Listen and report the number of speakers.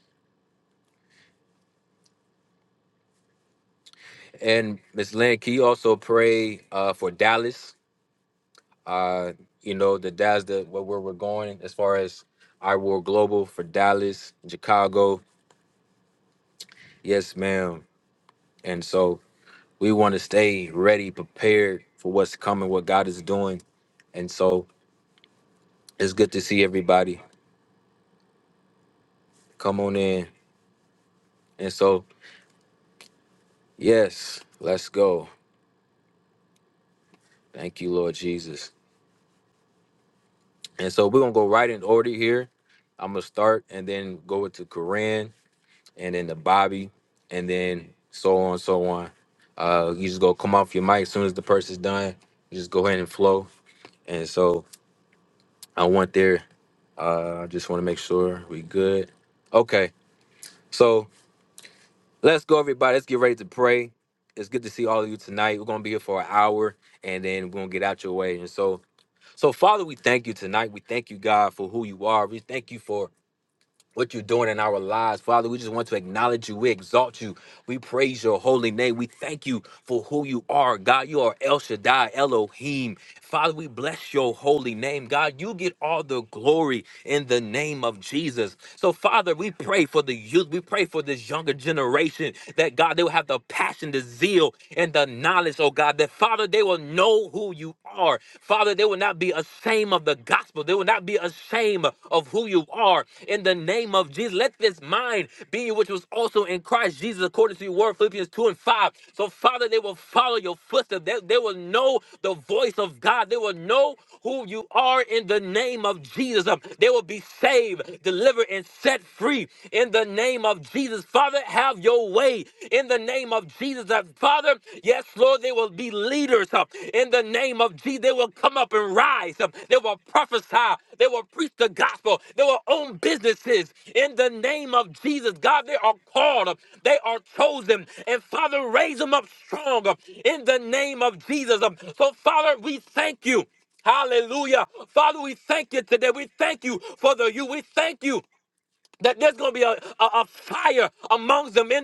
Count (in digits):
1